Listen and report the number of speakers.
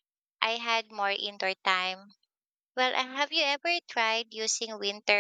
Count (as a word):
one